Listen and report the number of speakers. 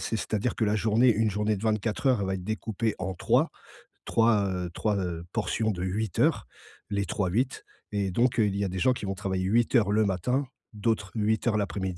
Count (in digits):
1